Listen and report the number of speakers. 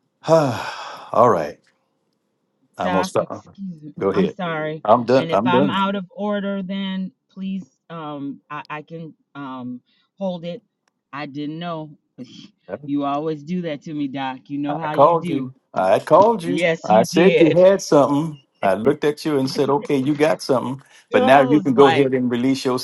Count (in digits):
2